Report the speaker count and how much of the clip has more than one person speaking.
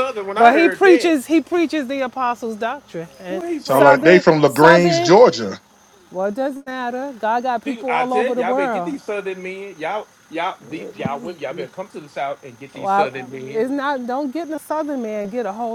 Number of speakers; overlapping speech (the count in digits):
3, about 31%